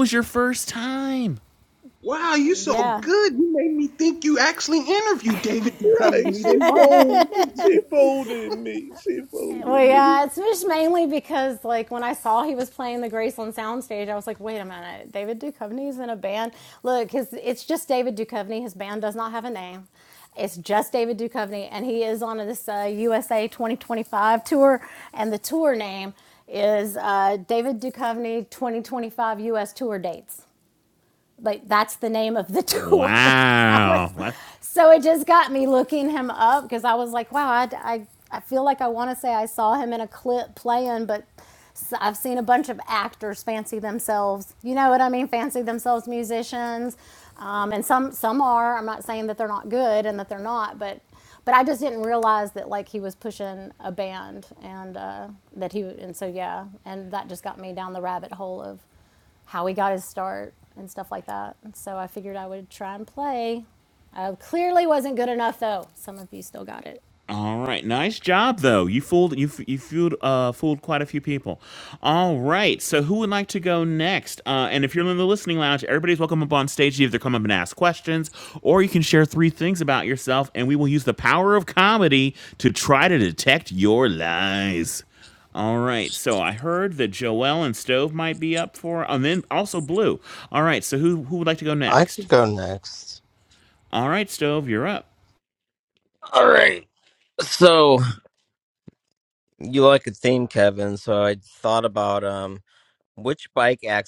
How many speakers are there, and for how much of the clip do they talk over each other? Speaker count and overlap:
five, about 4%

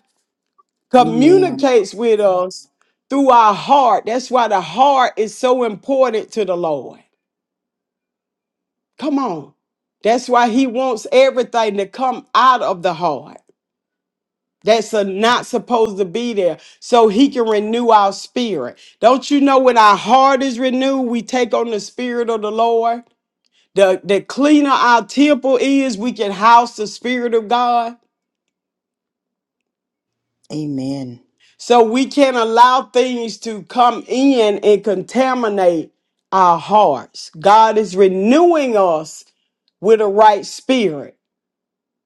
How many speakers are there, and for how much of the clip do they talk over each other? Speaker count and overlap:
two, about 2%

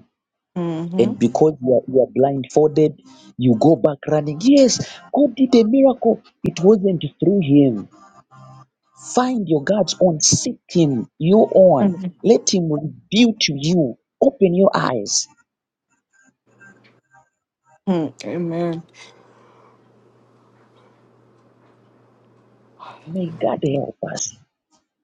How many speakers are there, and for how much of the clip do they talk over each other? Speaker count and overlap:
two, about 1%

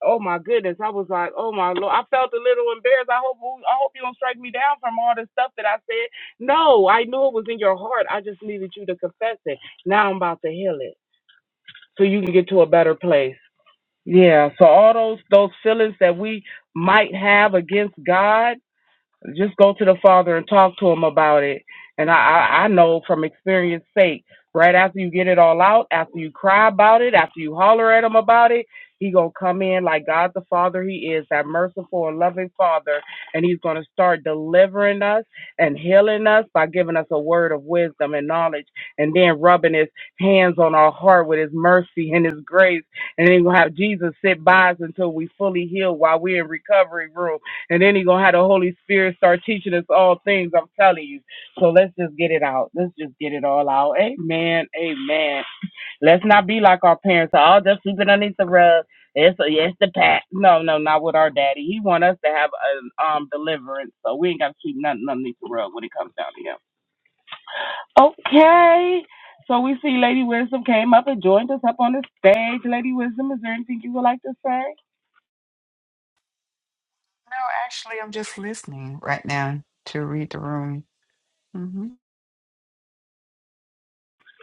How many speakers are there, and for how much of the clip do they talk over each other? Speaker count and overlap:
two, no overlap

